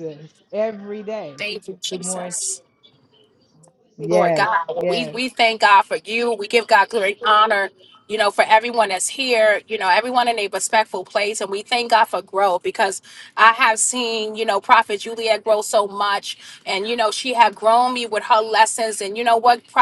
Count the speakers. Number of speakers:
two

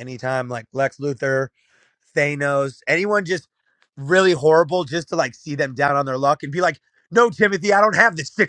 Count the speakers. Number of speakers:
one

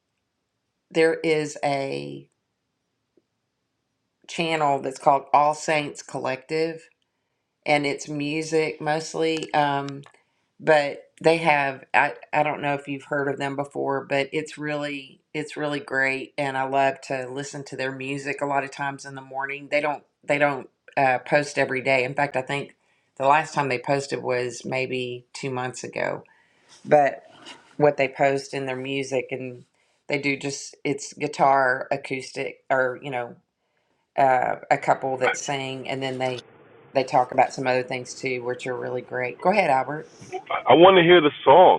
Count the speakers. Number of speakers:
two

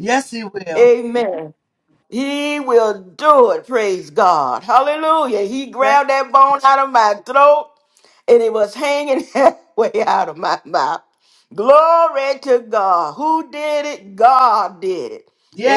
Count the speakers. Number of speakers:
two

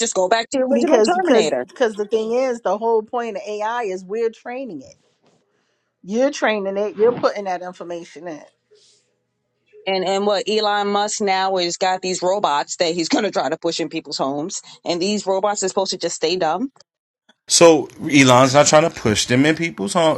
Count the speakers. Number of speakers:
three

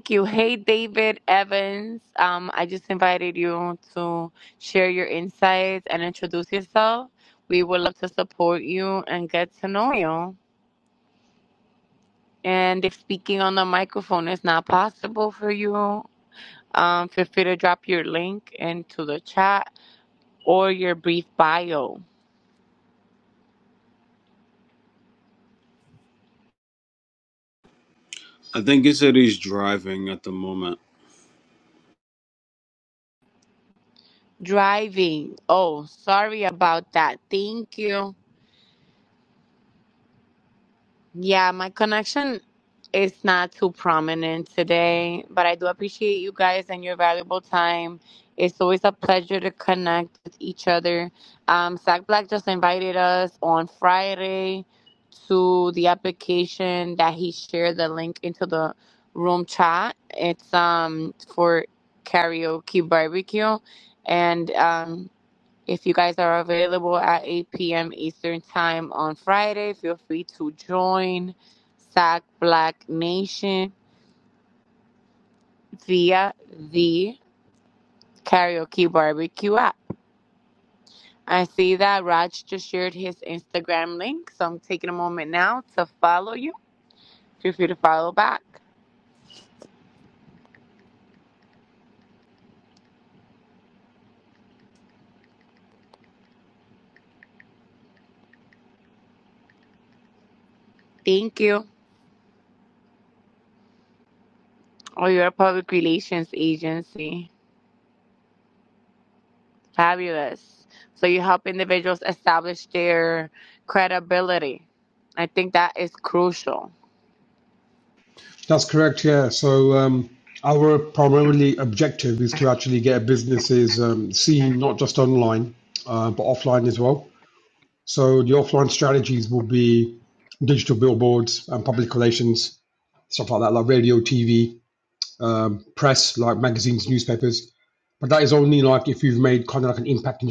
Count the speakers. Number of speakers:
three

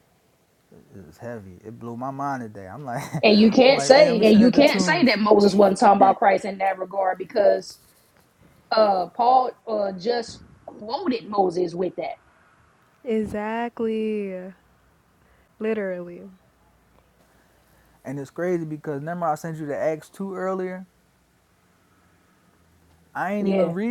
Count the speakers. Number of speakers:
three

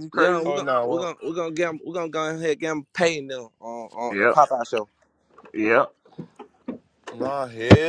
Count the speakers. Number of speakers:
three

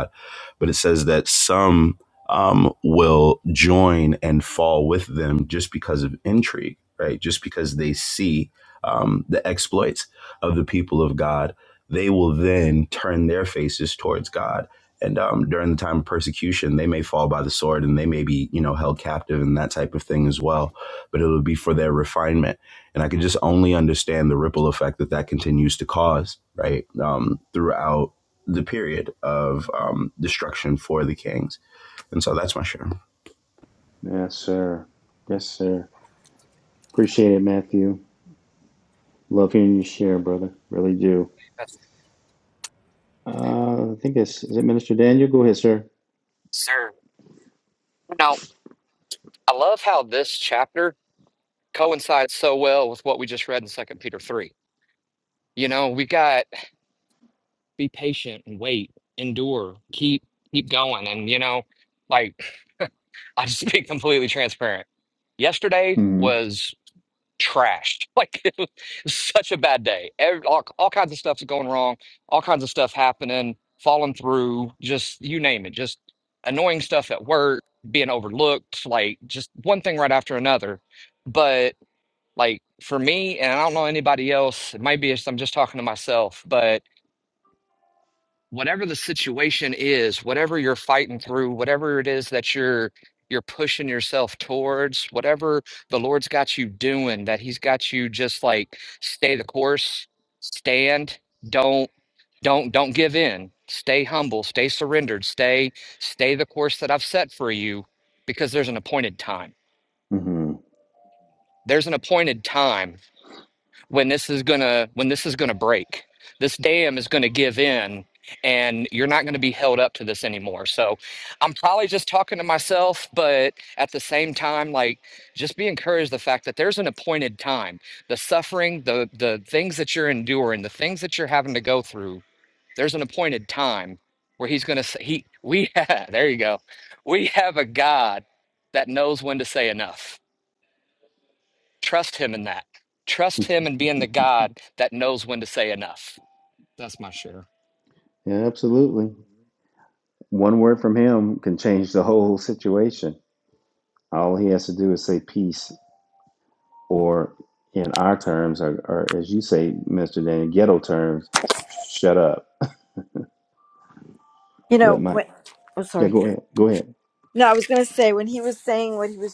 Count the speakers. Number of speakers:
four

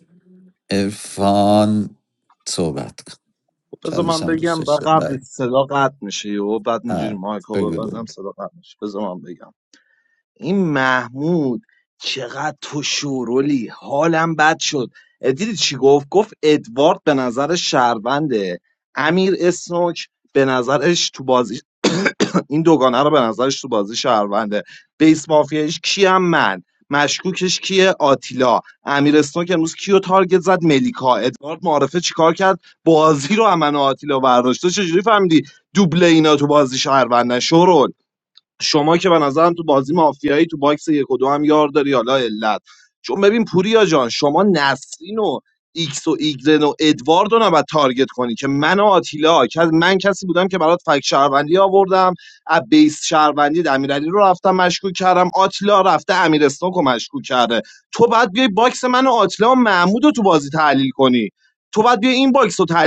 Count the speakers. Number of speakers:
two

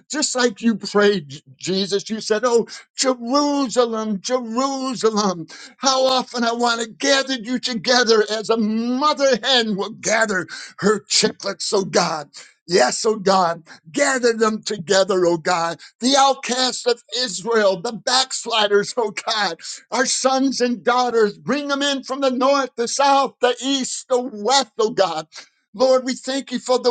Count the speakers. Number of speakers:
one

